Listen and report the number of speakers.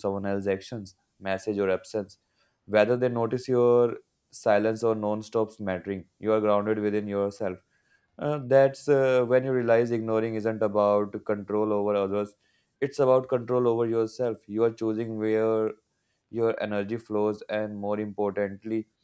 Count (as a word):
one